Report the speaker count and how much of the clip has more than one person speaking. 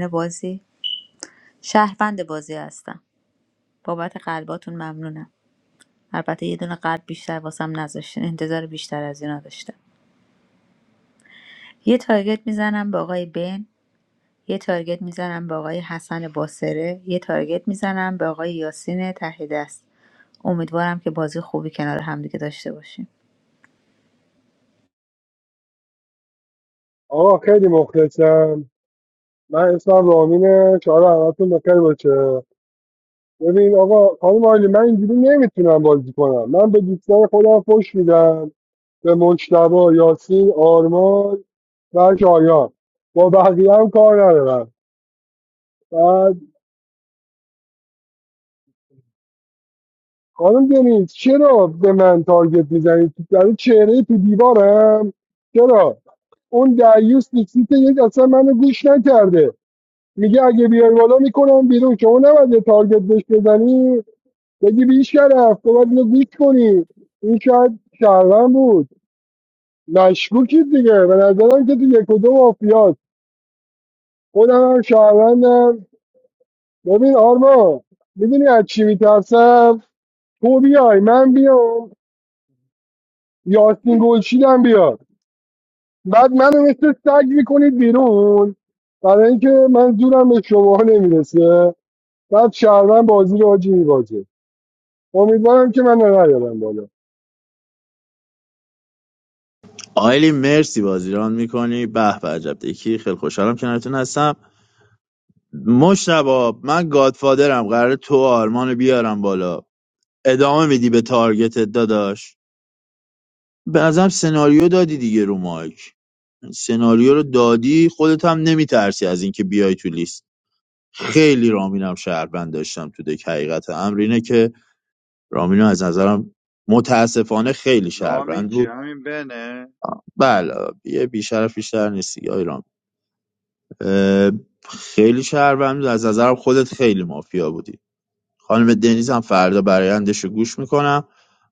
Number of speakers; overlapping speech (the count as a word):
four, under 1%